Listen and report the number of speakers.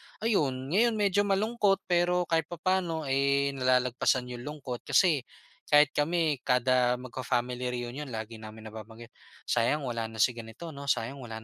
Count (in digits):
1